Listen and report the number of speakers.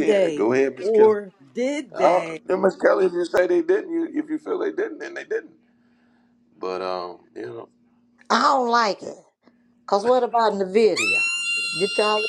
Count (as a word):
three